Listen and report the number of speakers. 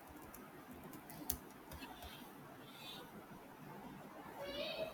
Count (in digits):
0